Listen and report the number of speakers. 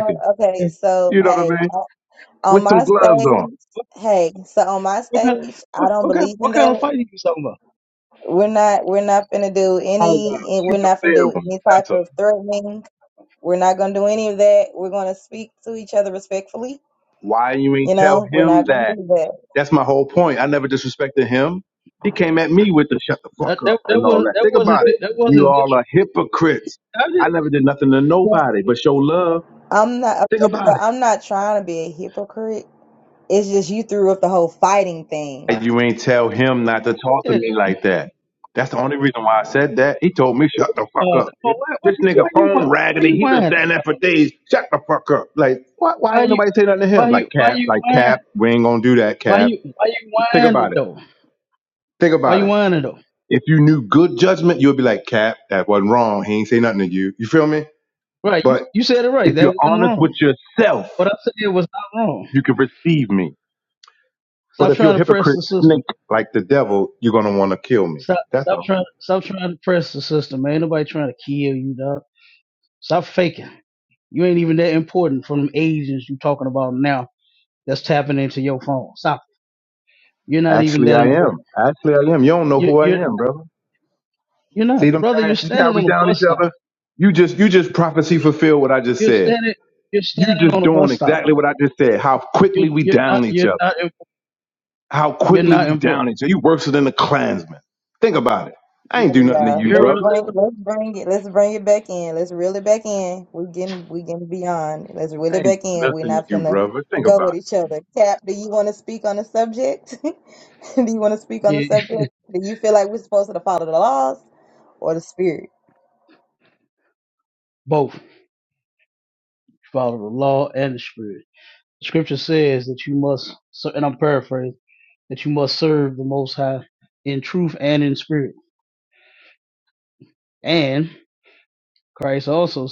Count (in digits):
3